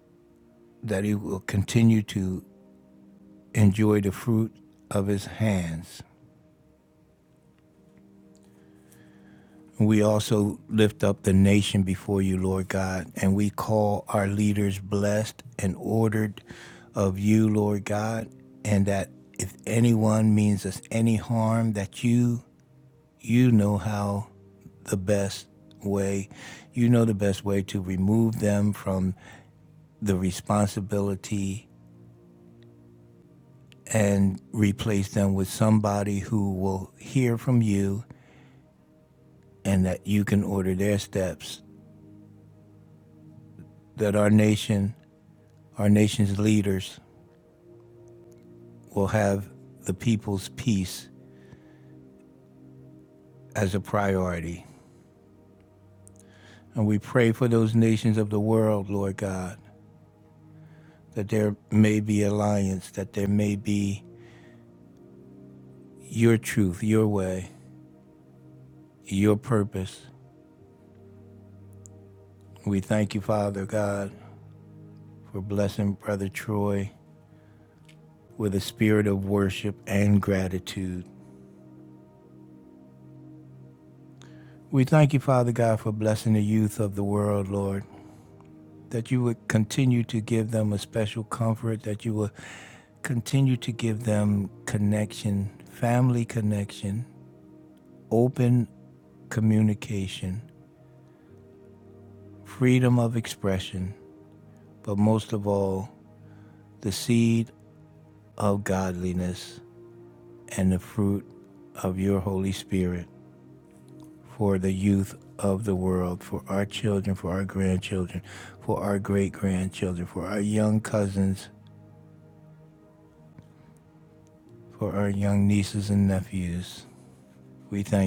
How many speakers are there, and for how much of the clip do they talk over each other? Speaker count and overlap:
1, no overlap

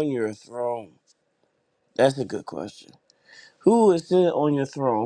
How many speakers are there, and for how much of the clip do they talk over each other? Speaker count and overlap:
1, no overlap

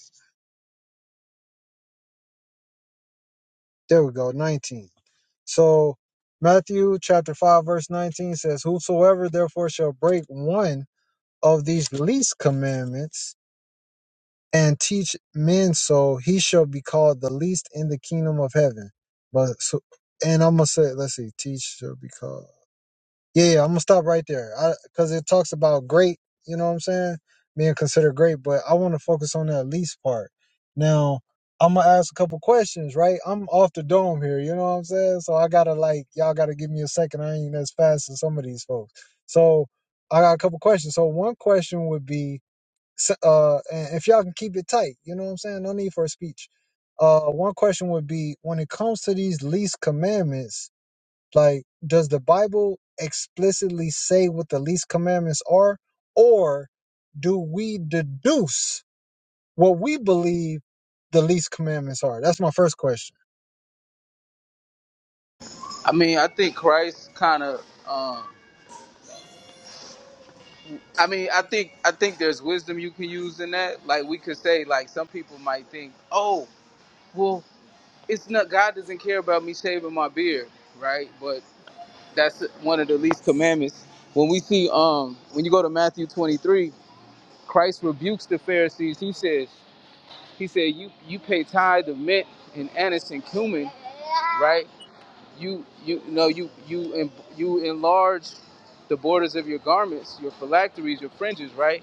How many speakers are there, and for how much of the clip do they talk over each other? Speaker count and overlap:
2, no overlap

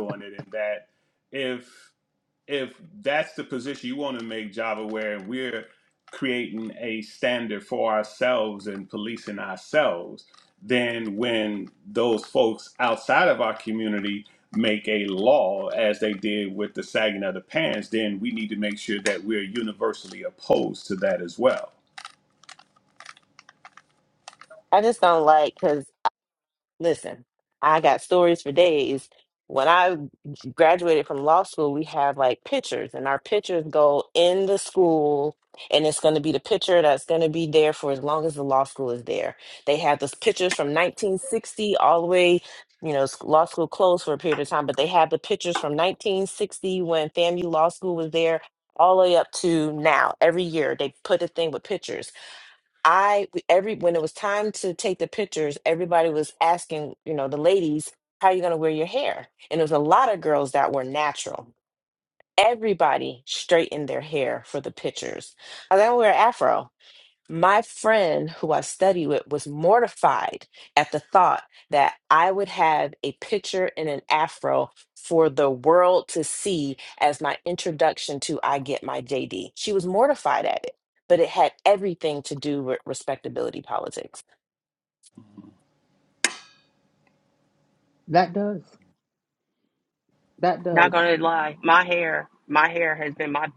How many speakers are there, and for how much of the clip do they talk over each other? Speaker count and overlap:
4, under 1%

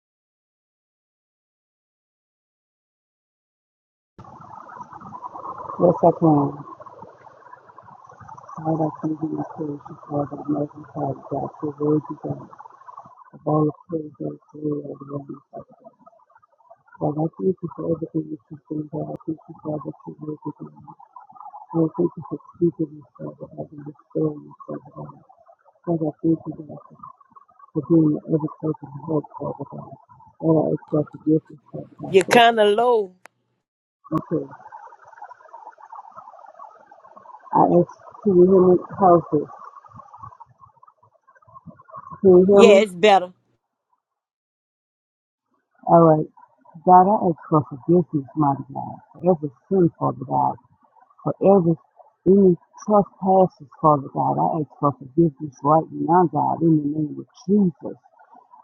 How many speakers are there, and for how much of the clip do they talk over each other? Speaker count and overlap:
2, about 1%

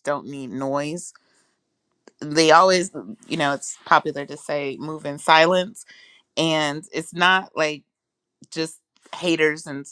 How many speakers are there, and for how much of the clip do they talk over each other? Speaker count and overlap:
1, no overlap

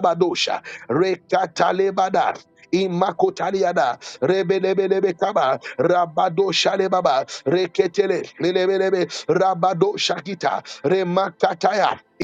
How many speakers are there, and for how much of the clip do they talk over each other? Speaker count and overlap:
1, no overlap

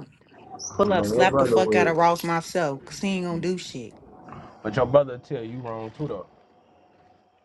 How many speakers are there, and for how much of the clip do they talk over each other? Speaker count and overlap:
2, about 16%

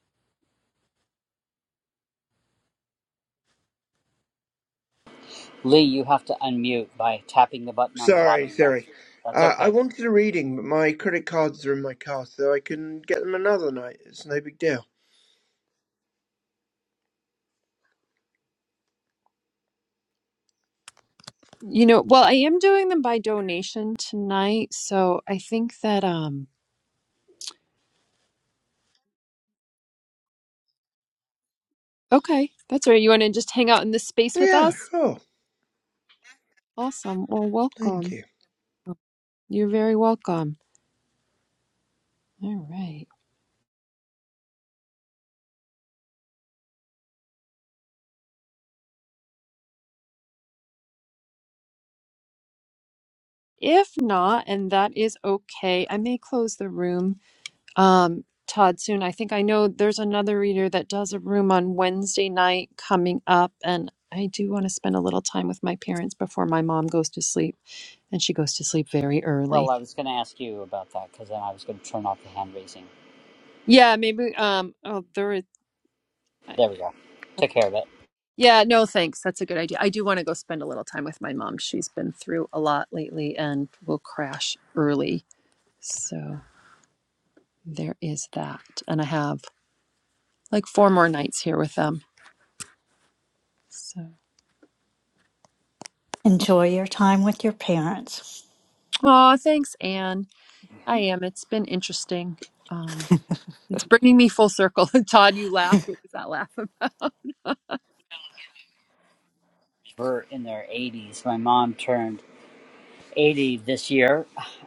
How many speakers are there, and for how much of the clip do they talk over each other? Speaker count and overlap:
4, about 2%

